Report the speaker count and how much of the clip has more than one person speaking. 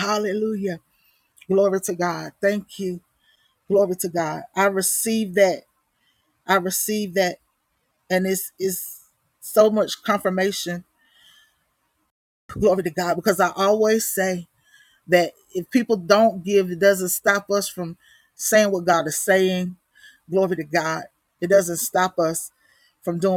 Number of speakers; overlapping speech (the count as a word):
one, no overlap